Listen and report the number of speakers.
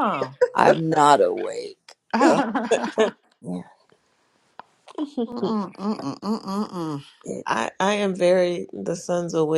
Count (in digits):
3